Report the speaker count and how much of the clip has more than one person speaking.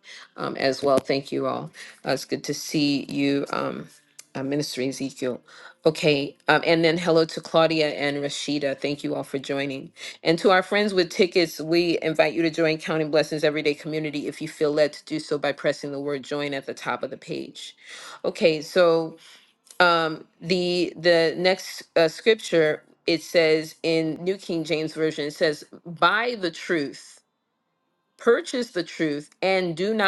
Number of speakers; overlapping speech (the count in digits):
1, no overlap